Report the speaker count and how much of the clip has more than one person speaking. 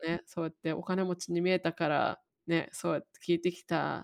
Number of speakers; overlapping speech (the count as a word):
one, no overlap